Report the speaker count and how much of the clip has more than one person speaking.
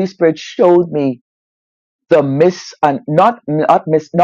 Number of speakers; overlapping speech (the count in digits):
1, no overlap